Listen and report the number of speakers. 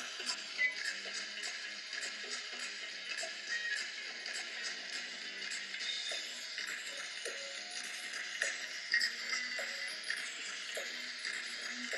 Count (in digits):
0